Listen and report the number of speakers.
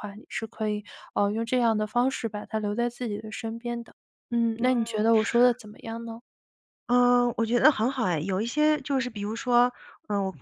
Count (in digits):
2